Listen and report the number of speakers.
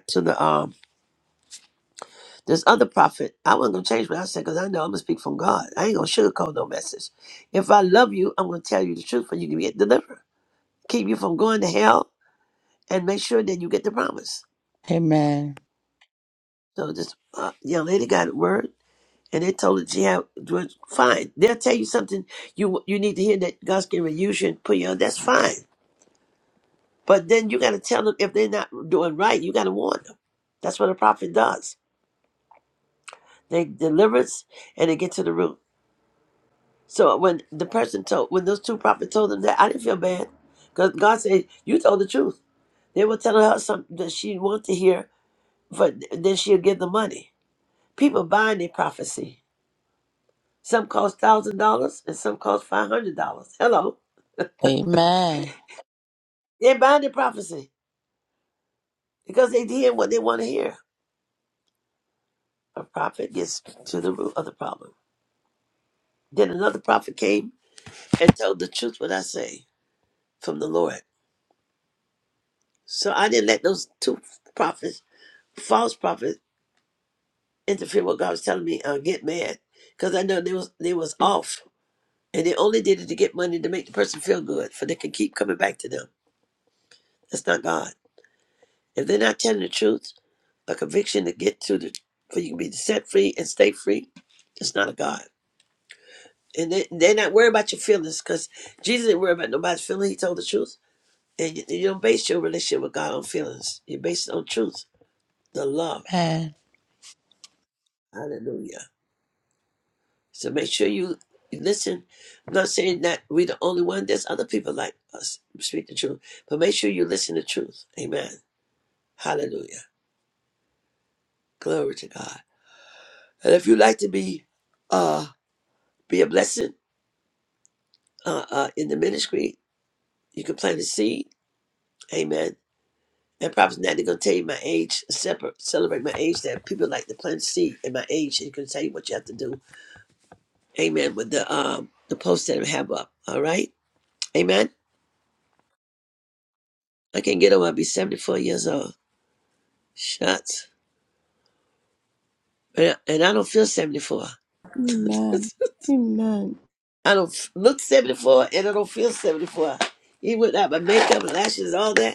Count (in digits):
3